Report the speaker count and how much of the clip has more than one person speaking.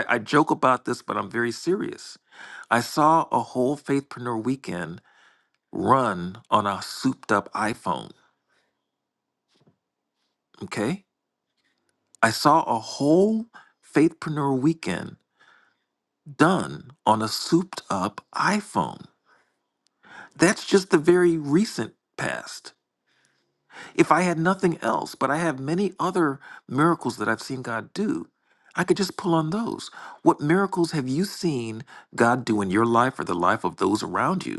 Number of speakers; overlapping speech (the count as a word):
one, no overlap